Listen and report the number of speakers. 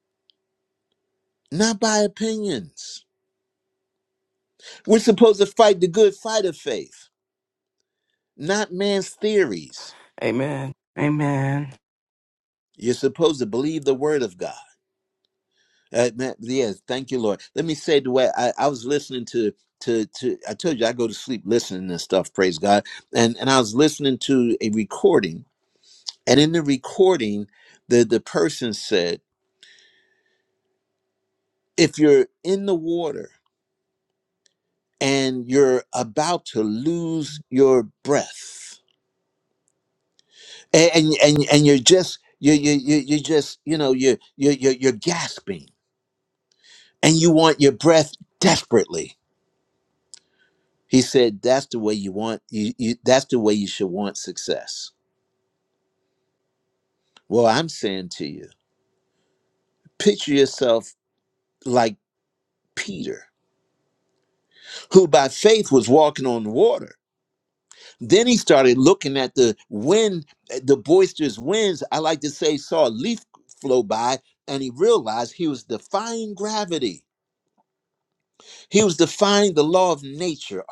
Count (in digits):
2